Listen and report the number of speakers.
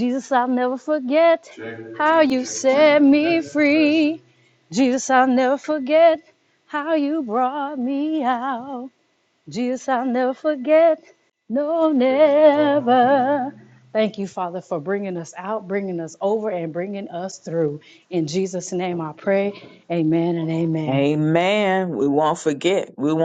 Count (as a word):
two